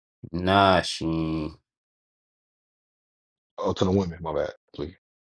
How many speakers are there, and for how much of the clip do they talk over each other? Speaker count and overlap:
two, no overlap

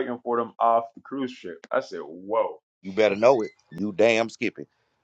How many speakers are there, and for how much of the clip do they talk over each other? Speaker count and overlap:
two, no overlap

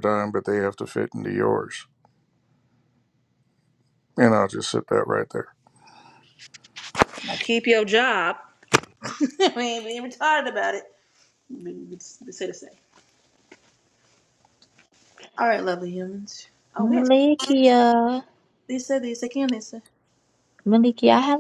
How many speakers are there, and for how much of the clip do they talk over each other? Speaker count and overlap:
three, about 1%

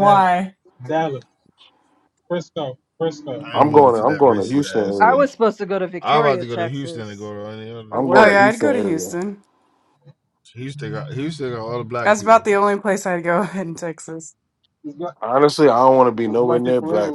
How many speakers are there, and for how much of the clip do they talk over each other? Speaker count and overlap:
five, about 33%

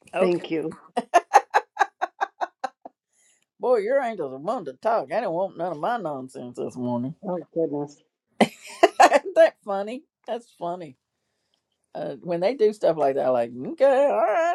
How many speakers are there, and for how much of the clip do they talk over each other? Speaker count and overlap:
two, about 2%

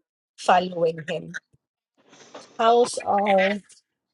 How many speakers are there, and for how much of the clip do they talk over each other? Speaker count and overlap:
one, no overlap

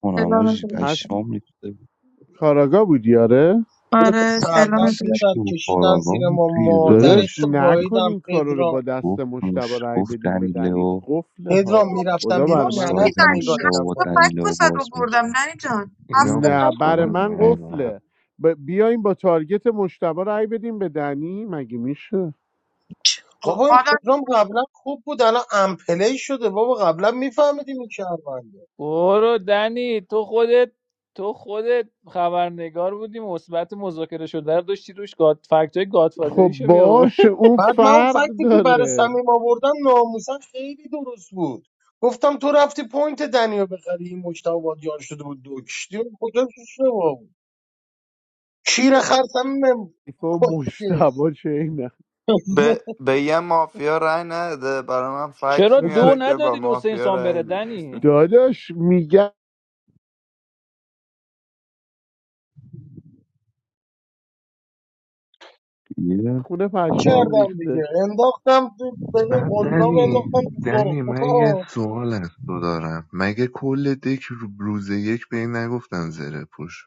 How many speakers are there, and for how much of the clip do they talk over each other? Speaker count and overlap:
seven, about 26%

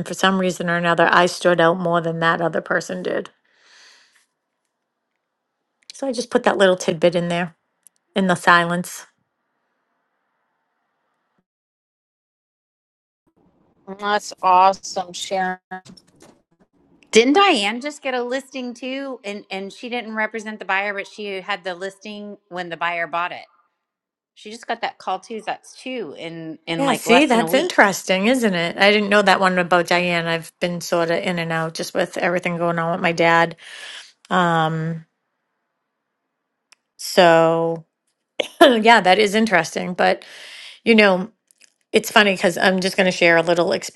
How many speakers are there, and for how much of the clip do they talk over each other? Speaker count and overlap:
three, about 3%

